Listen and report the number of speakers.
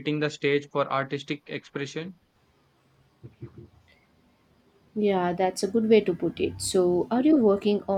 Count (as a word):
two